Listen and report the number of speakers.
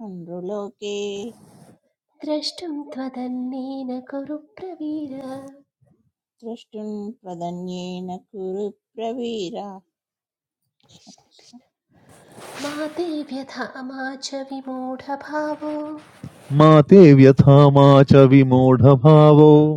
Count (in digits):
3